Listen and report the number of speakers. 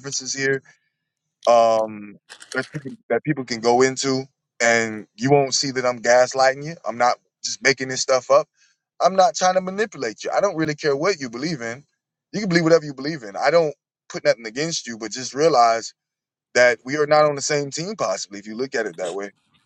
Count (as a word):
one